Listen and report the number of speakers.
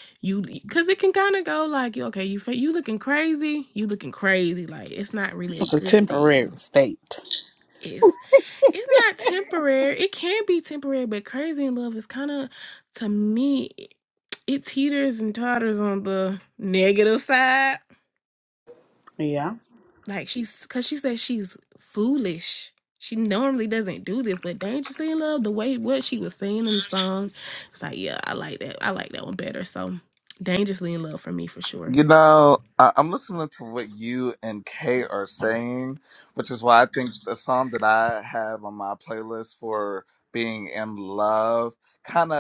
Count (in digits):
3